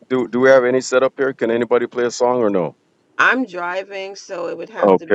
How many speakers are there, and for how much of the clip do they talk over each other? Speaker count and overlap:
two, about 7%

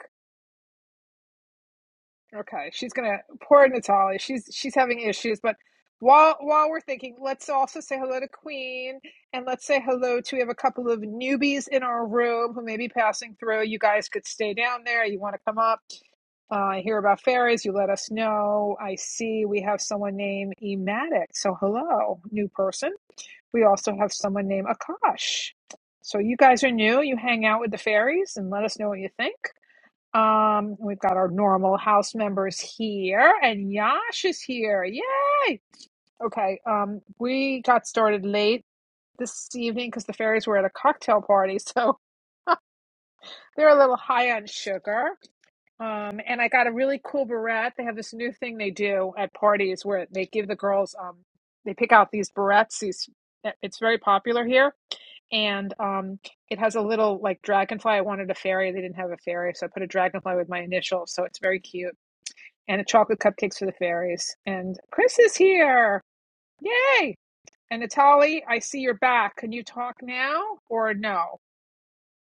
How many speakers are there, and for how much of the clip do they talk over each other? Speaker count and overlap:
one, no overlap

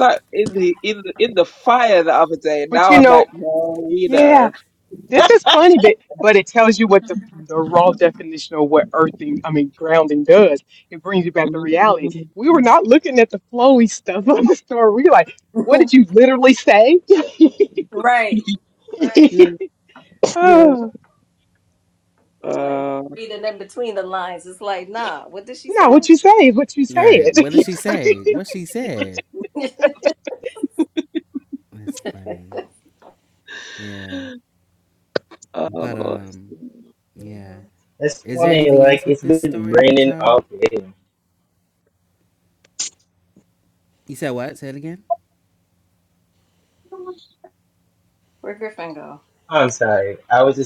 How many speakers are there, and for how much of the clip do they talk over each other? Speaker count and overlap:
five, about 12%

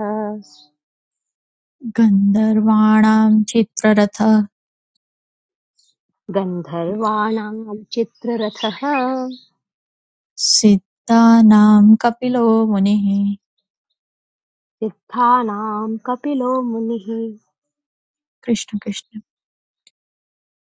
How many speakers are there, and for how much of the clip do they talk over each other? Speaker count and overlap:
two, no overlap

